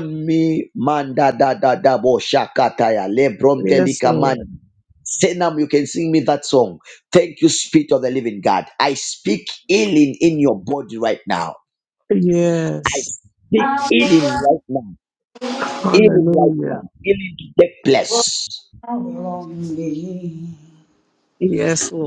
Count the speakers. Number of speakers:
3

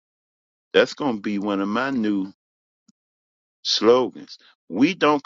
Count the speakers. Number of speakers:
1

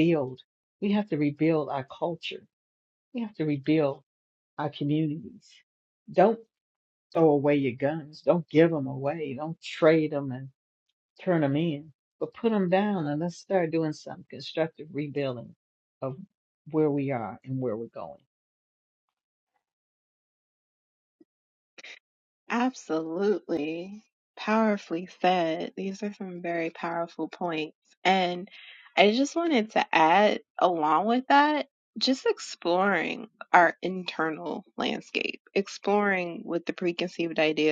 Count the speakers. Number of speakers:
2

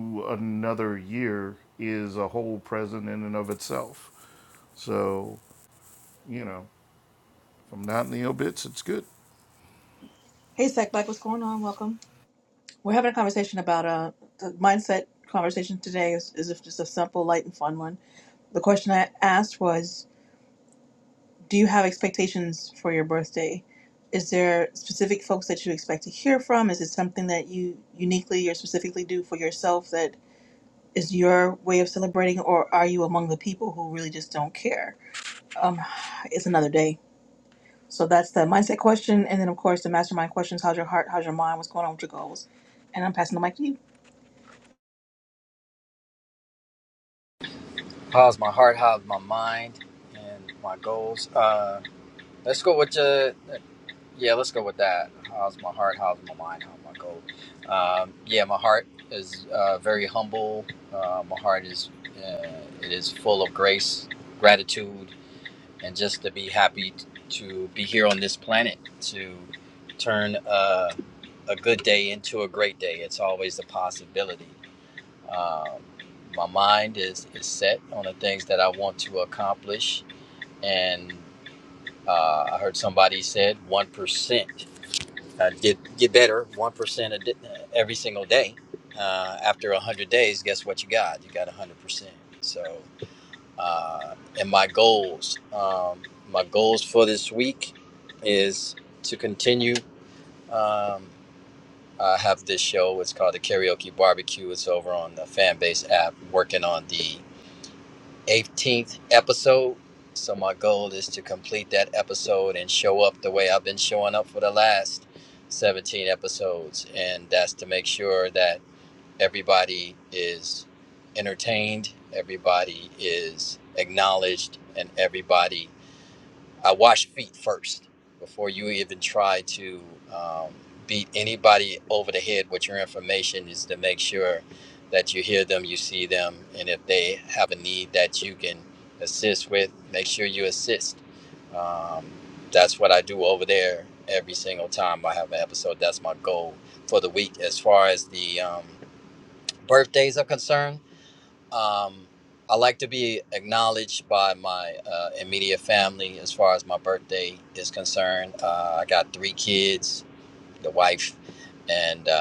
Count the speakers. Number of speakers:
3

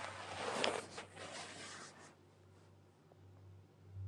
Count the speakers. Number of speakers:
0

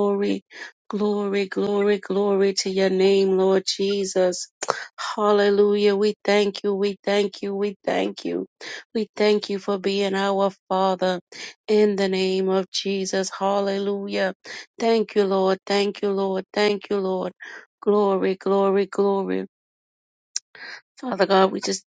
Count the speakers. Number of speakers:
1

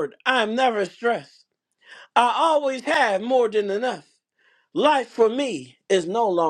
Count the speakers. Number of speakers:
1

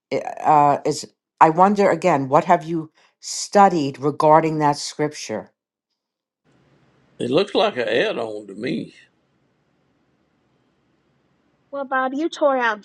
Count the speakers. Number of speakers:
3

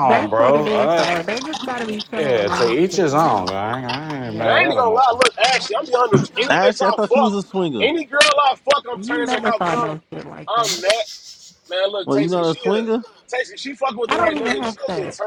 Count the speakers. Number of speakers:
4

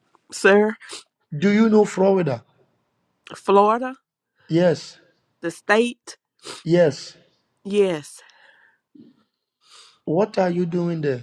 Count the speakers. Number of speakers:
2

